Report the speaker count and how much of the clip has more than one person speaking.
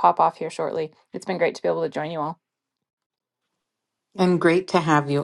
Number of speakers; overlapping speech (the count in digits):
2, no overlap